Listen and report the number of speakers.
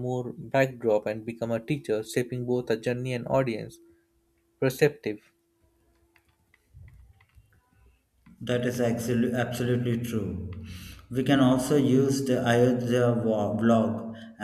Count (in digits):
2